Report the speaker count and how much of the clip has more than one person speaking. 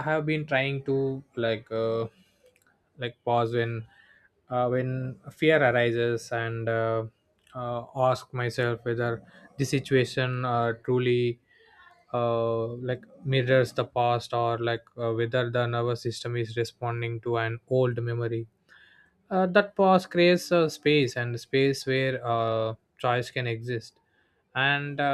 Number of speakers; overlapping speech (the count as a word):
one, no overlap